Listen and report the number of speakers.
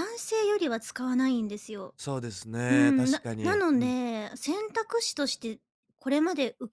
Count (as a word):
two